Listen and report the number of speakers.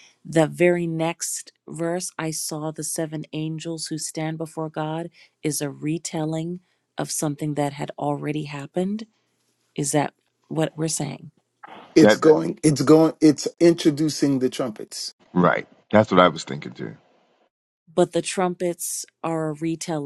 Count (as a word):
three